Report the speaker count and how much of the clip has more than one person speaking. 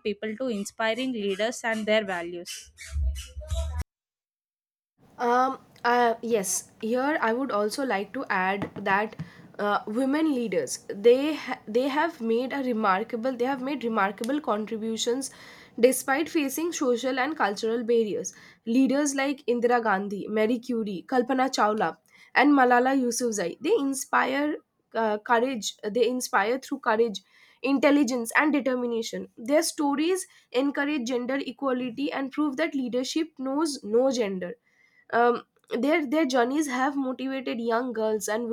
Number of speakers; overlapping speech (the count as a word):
two, no overlap